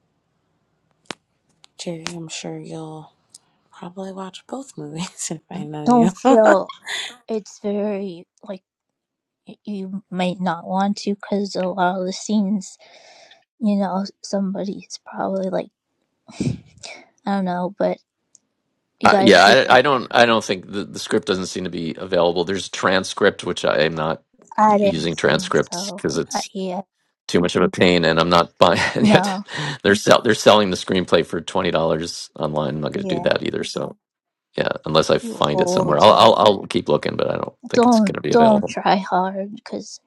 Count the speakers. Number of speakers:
3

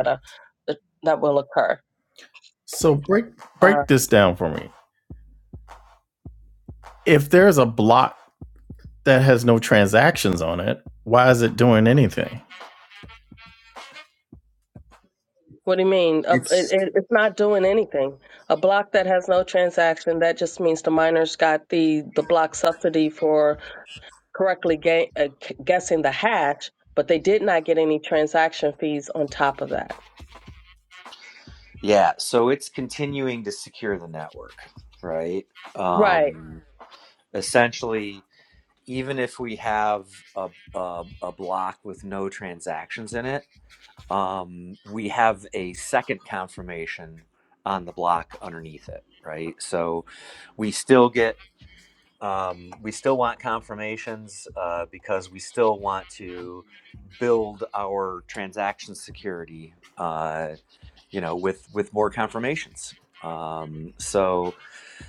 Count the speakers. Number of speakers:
3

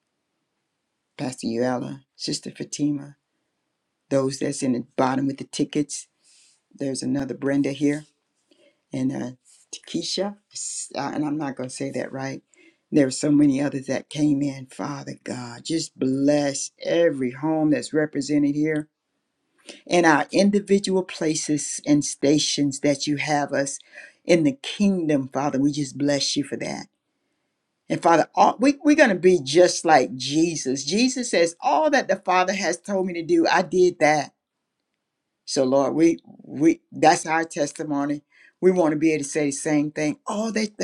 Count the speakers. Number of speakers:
1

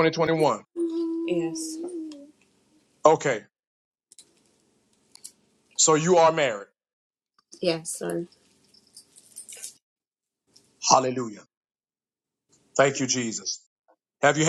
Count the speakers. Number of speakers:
2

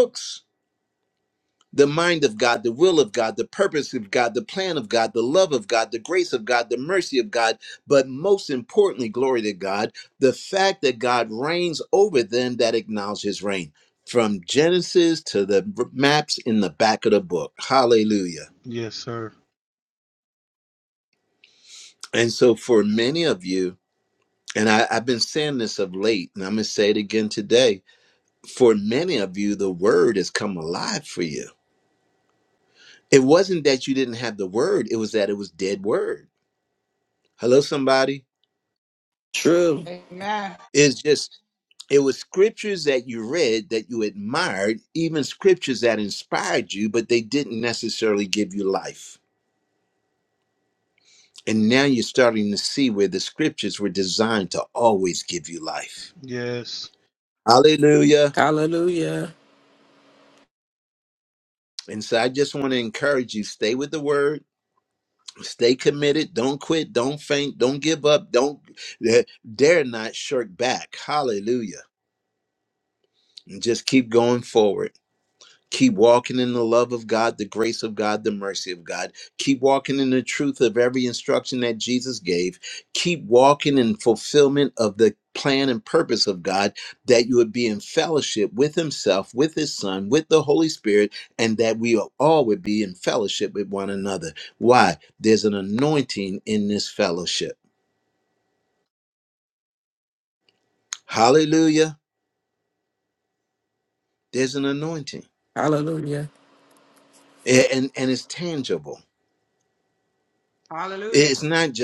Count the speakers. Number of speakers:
4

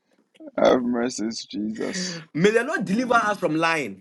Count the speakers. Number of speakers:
2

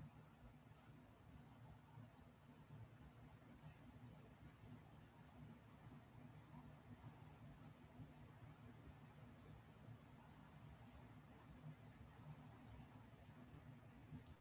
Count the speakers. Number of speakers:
0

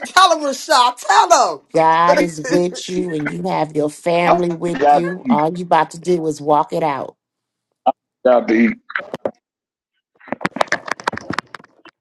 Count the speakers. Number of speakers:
3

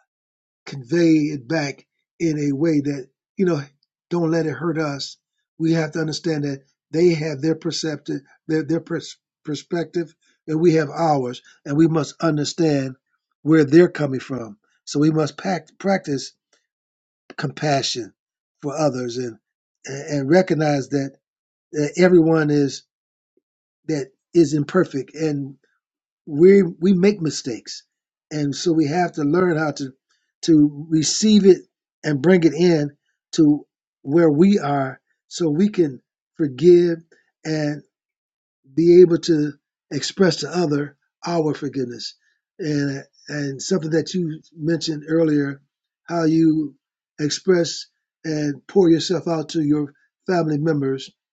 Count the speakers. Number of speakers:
1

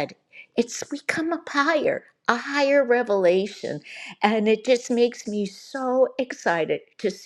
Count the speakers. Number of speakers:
1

